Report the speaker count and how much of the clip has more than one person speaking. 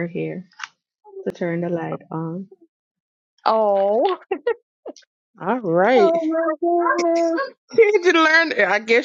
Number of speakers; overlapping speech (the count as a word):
three, about 2%